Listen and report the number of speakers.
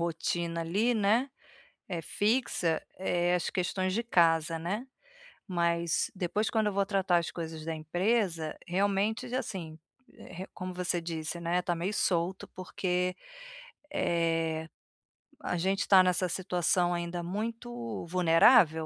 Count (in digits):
1